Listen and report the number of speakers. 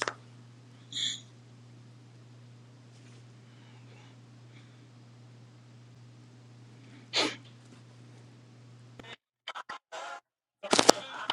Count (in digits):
0